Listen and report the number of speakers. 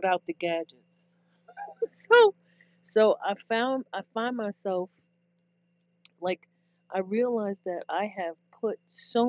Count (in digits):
1